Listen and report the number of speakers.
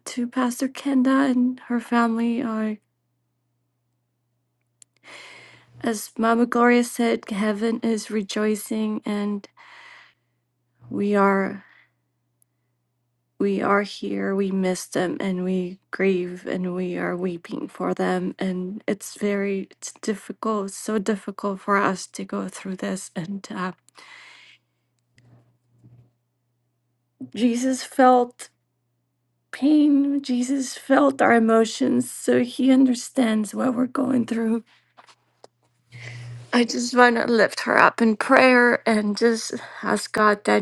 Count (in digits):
1